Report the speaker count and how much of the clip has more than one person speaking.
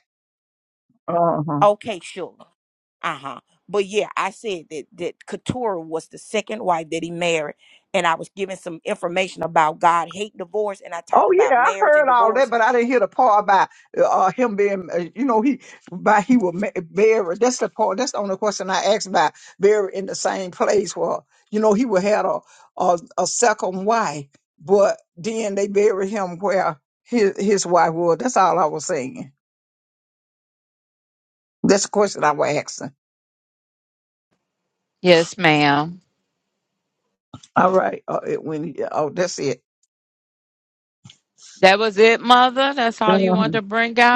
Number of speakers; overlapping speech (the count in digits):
3, about 4%